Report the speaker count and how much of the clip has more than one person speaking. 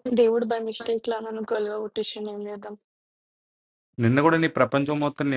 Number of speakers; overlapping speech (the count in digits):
2, no overlap